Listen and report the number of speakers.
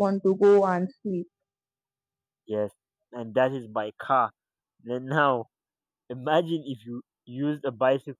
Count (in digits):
2